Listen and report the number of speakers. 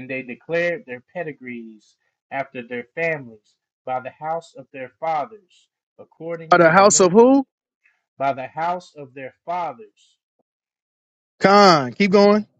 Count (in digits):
2